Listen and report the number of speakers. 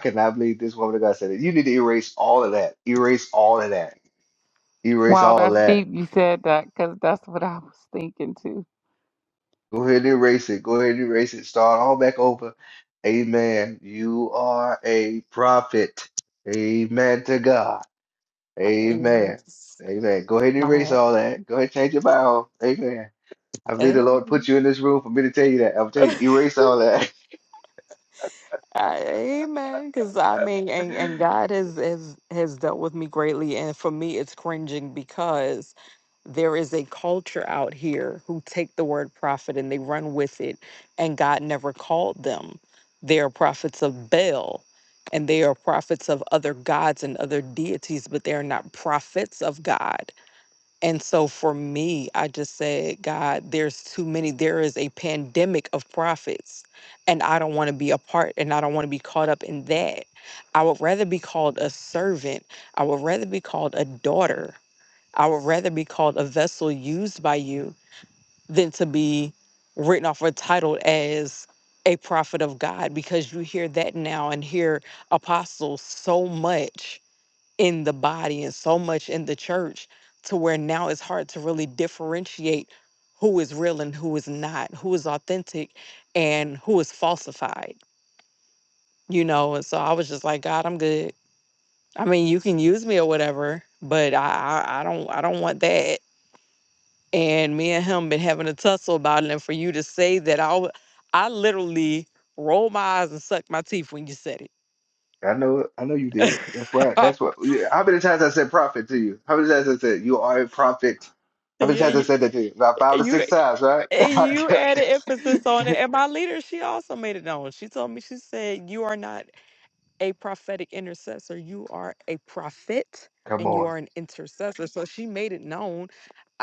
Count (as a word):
three